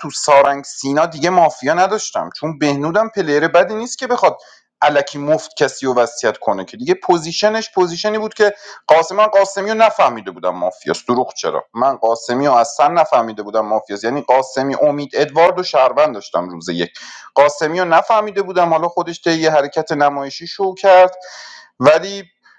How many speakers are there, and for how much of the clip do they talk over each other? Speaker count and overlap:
1, no overlap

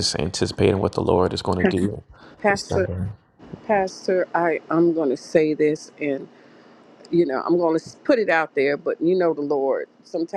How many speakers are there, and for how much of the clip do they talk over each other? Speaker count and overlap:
2, about 4%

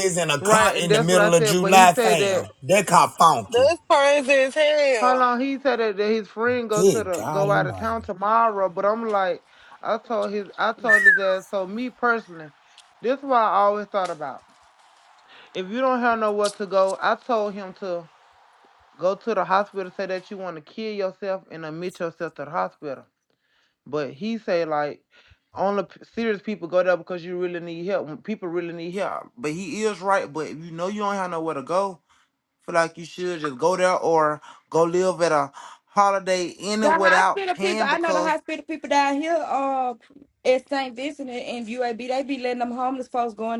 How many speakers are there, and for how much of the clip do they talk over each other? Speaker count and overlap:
4, about 12%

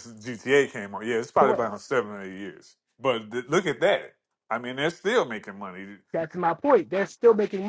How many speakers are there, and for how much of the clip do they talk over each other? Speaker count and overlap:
2, no overlap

